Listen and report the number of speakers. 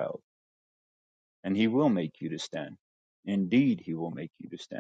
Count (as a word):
one